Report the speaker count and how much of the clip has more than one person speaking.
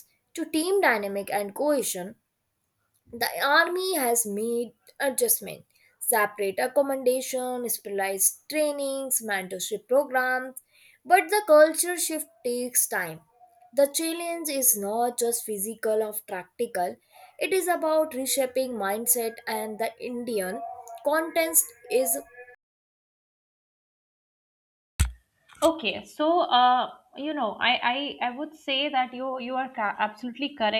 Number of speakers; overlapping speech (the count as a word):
two, no overlap